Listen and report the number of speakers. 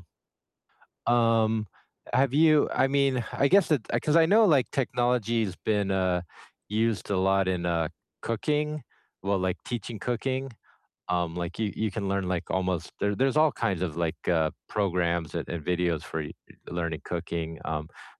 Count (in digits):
1